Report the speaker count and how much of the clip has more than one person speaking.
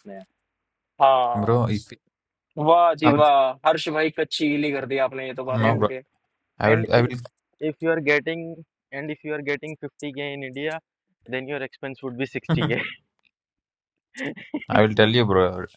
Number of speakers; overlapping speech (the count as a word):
three, about 7%